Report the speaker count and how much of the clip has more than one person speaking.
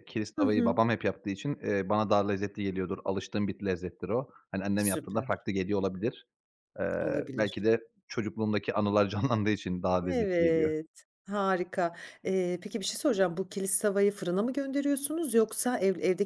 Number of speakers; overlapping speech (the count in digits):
2, about 12%